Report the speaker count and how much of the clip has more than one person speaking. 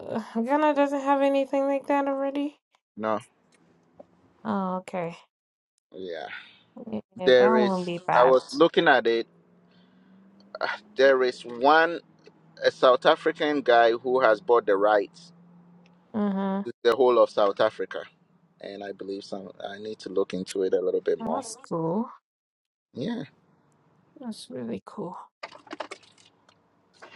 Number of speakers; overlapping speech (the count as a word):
two, about 3%